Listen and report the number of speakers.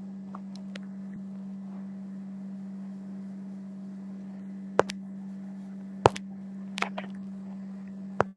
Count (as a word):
zero